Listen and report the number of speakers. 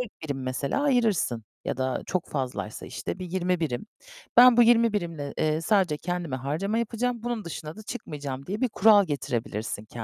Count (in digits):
1